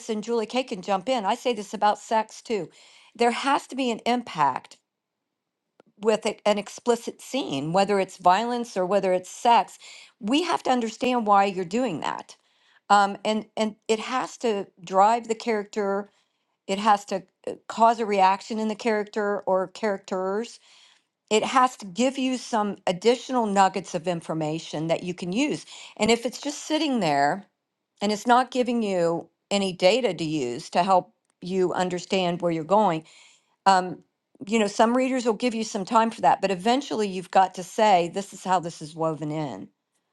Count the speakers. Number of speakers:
1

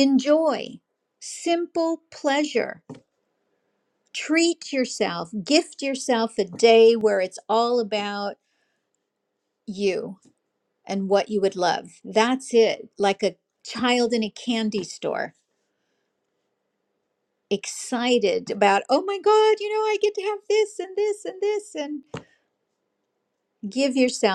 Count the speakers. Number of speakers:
1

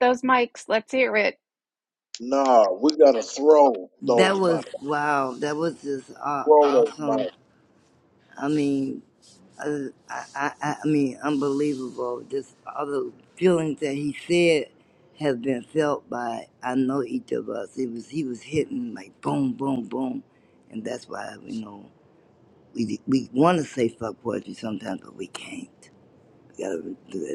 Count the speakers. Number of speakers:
3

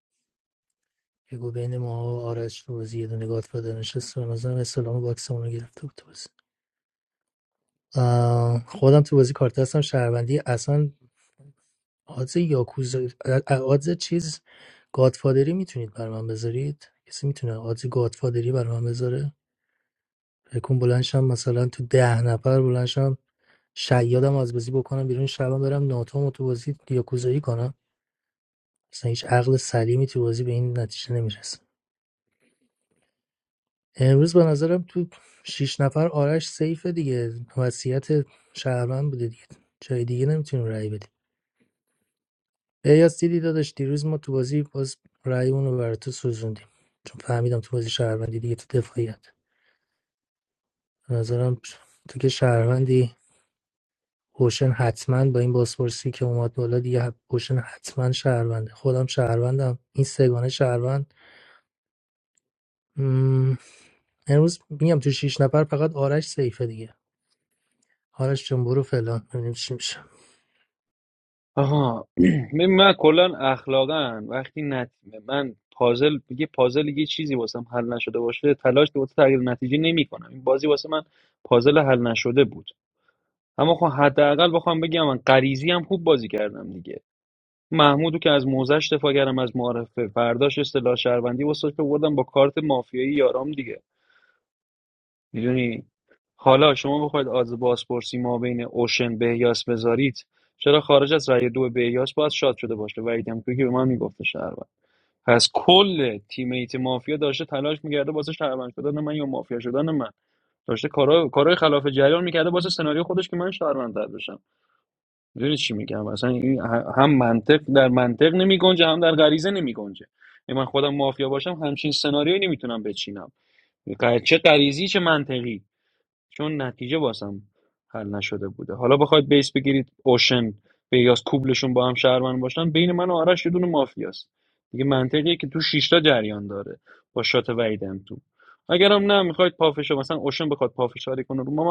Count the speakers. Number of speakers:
2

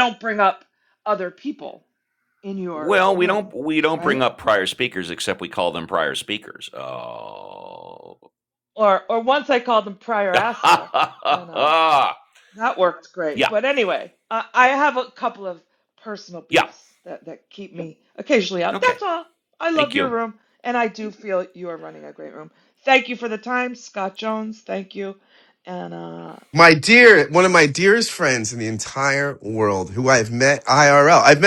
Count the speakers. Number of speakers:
3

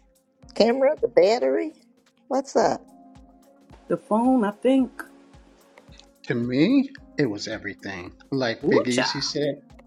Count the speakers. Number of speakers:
3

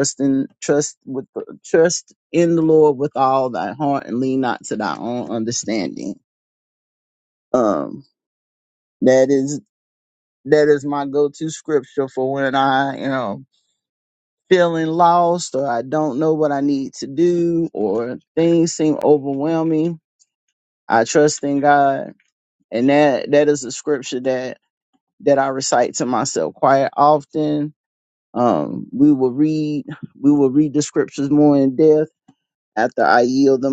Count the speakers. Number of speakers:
1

